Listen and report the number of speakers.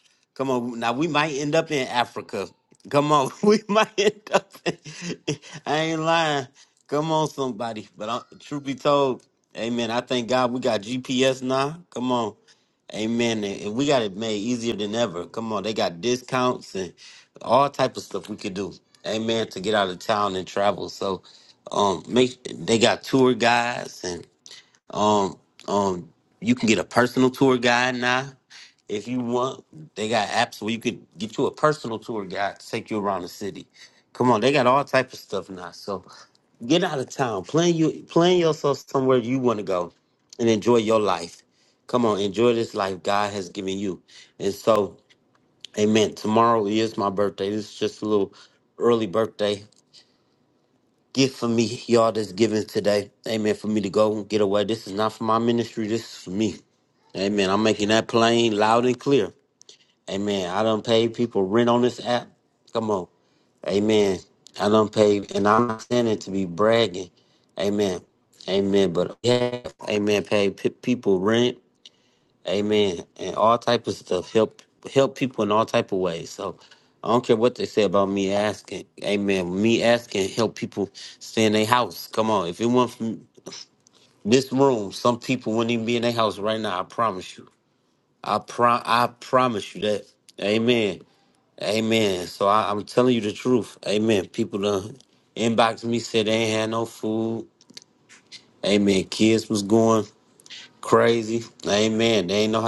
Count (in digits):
1